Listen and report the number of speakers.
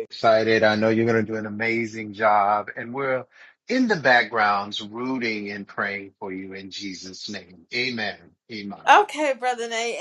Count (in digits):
2